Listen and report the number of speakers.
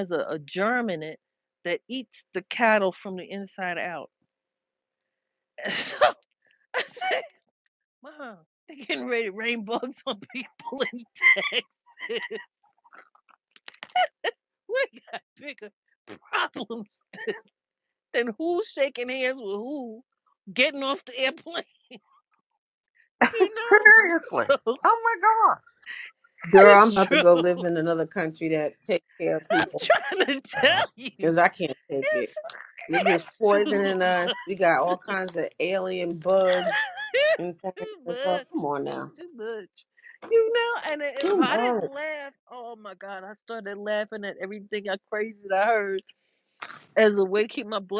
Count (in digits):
3